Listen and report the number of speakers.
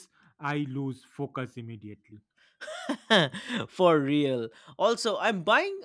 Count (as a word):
two